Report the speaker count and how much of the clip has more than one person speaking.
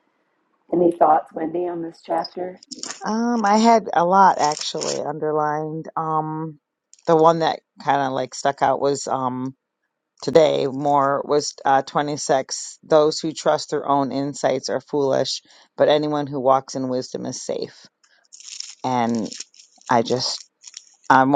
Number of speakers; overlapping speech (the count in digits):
2, no overlap